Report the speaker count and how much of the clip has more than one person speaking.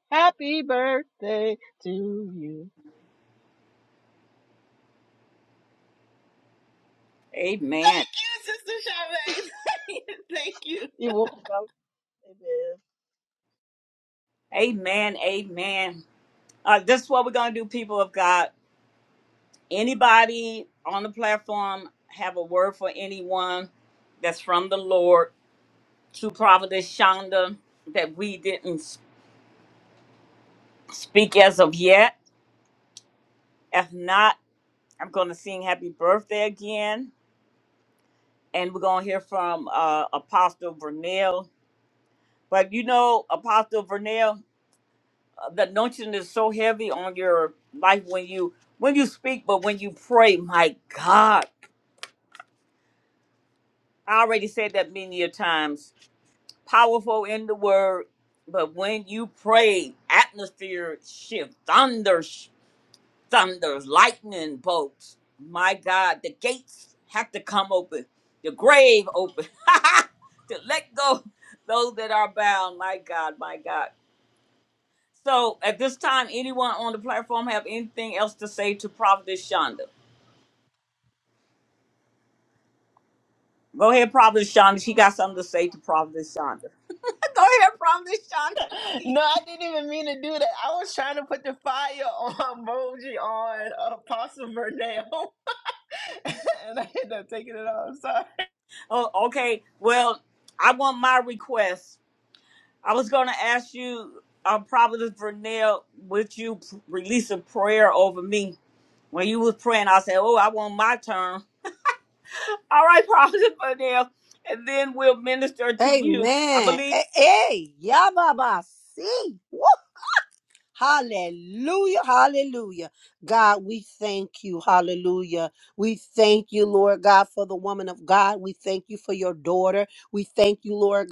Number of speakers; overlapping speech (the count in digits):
4, about 1%